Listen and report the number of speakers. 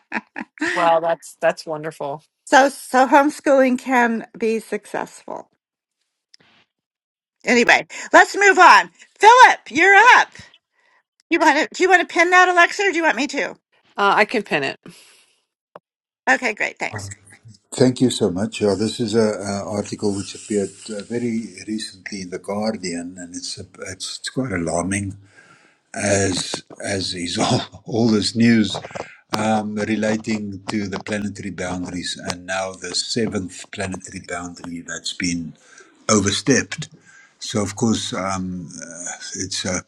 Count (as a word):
three